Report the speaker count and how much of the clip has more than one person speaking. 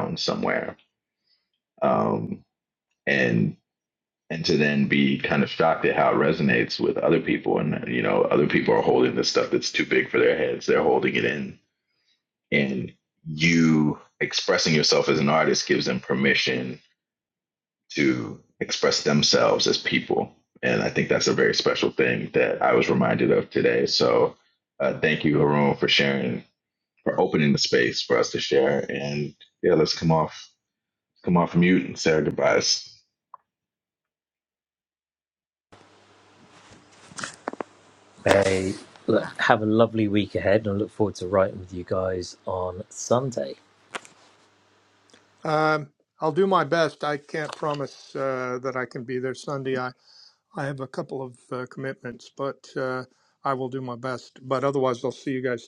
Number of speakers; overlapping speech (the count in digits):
3, no overlap